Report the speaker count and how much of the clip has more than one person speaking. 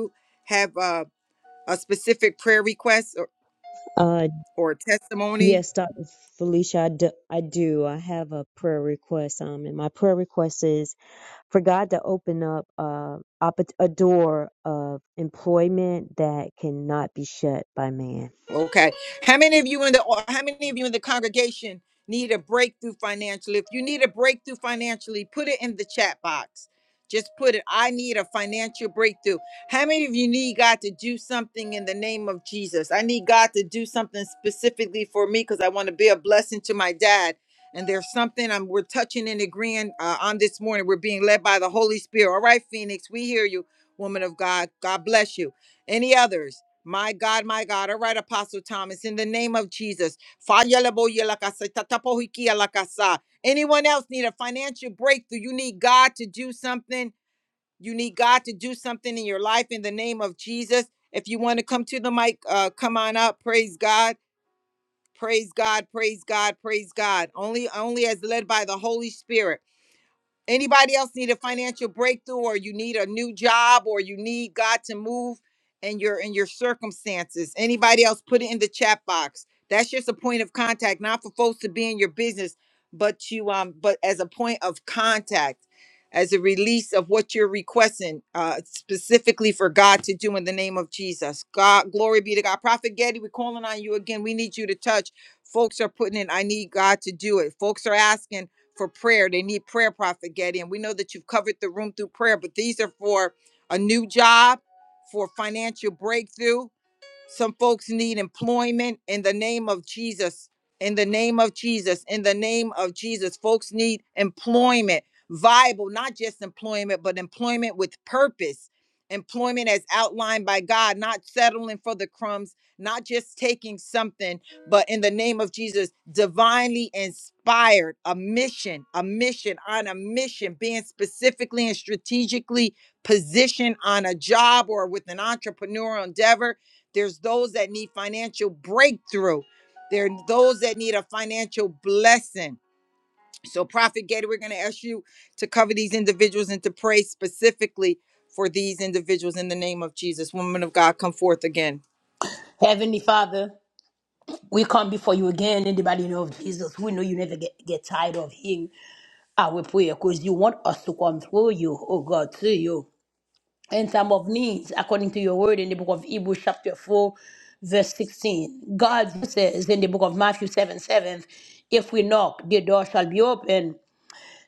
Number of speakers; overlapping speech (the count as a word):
three, under 1%